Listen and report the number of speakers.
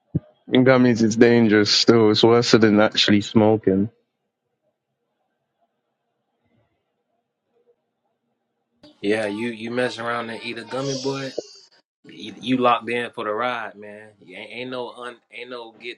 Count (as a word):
two